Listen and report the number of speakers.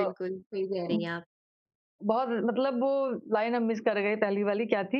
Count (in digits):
2